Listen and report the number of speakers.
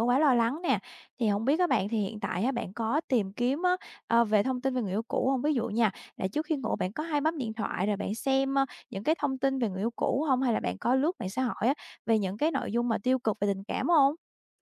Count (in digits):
1